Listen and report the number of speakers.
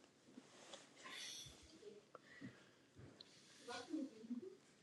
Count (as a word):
zero